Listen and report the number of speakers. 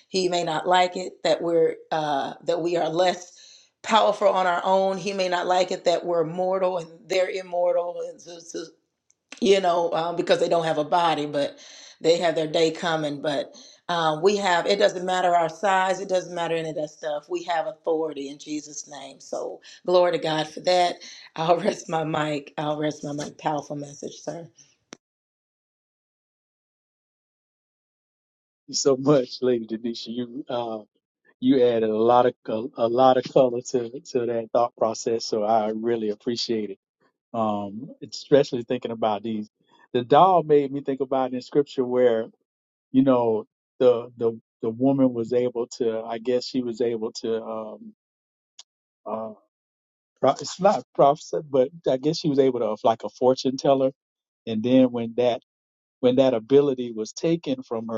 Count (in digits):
2